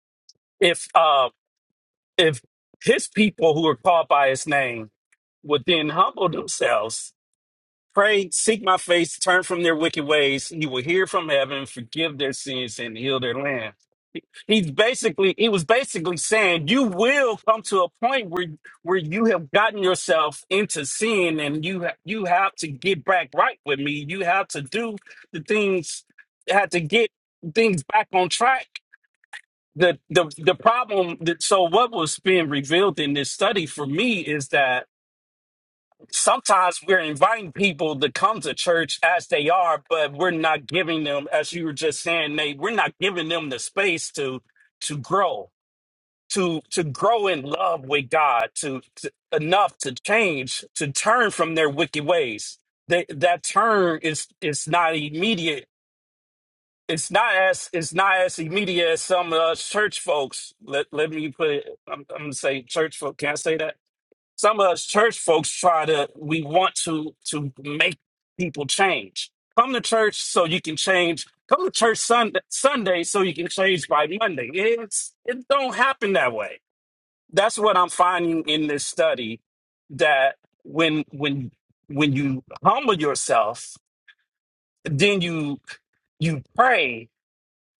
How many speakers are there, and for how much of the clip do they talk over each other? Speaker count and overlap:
1, no overlap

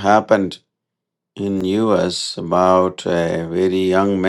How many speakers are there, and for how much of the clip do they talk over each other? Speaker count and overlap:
1, no overlap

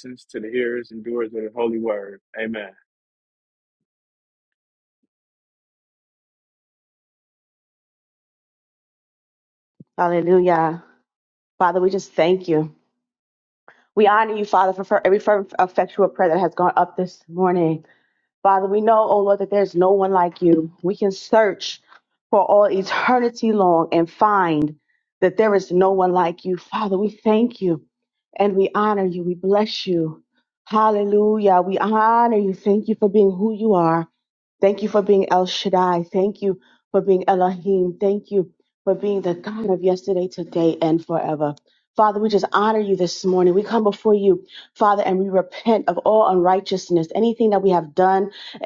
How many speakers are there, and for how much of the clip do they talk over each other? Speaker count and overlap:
2, no overlap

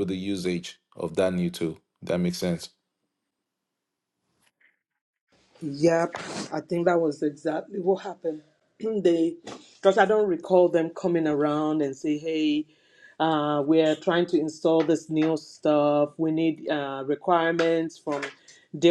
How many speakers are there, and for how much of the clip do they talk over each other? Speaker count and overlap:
2, no overlap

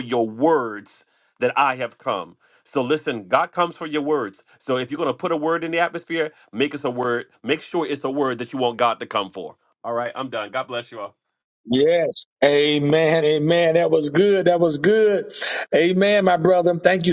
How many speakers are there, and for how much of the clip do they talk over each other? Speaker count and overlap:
2, no overlap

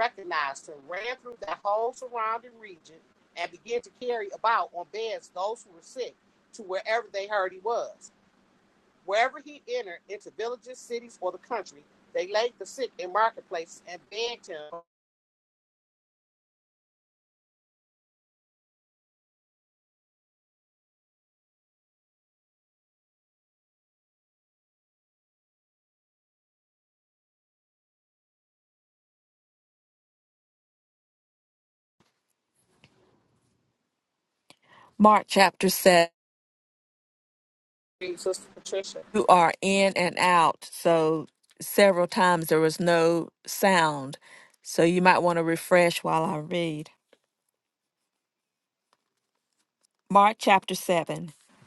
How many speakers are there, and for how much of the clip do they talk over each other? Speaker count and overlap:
2, no overlap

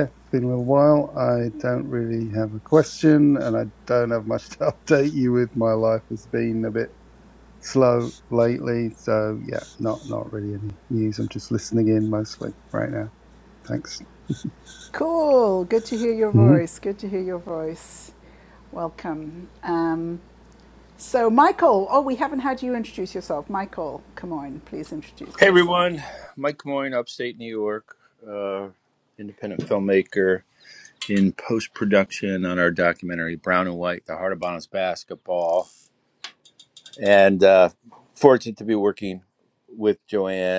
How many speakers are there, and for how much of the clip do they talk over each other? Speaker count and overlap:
3, about 2%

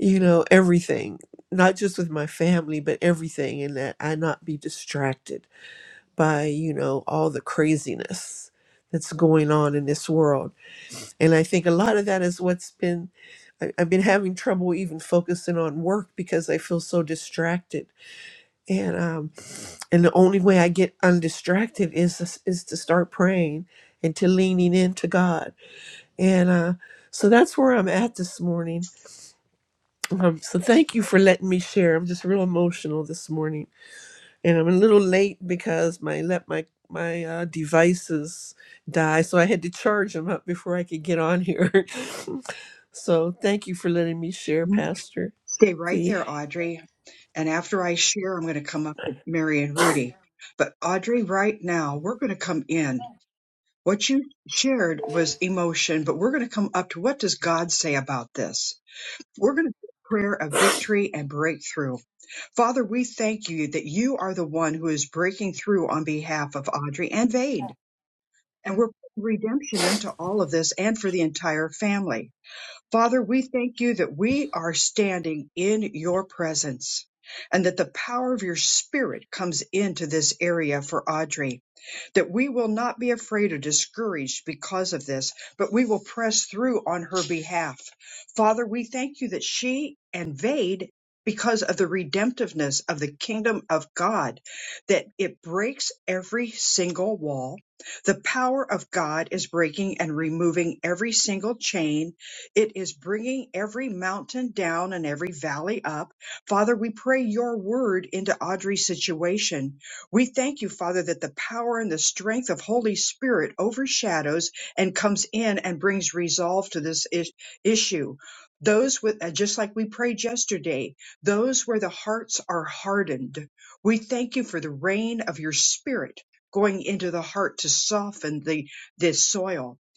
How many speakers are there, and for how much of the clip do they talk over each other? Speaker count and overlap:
2, under 1%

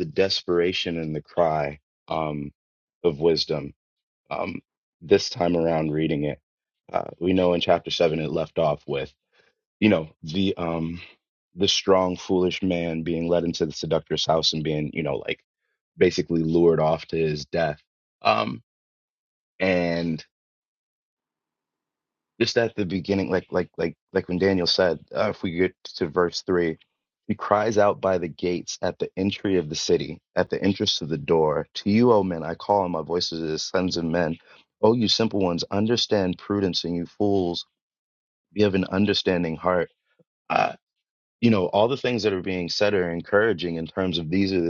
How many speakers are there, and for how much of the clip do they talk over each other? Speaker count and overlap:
1, no overlap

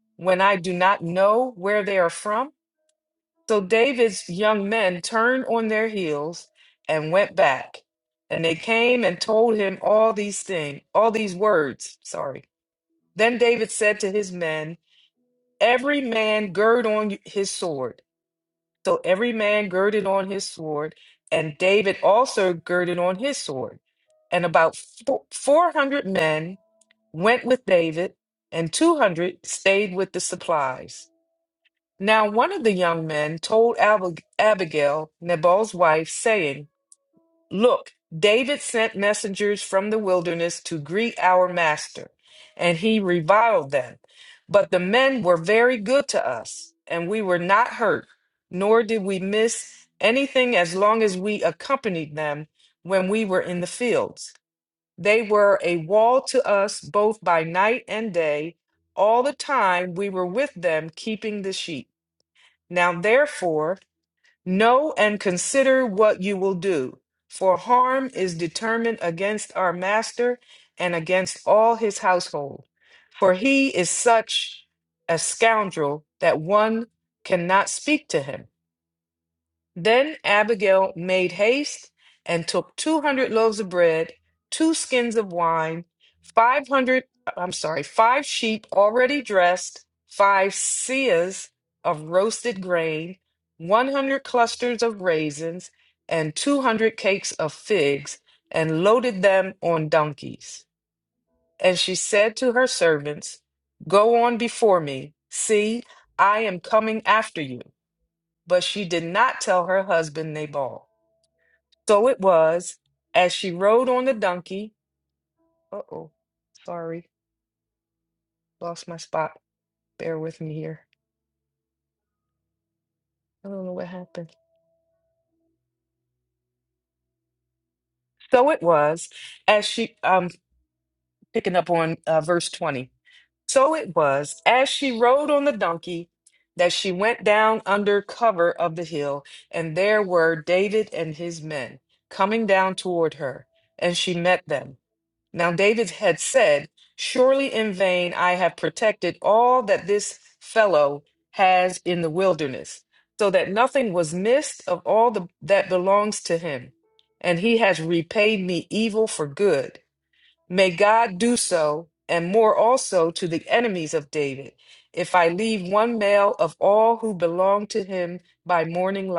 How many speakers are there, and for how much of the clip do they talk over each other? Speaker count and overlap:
1, no overlap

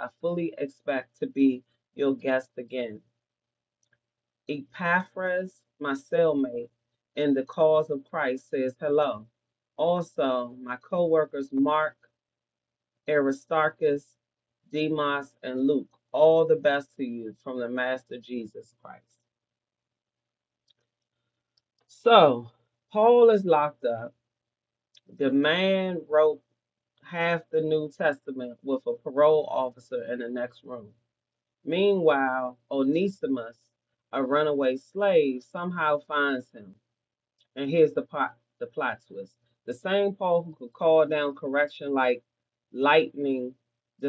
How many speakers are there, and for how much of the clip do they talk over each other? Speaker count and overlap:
1, no overlap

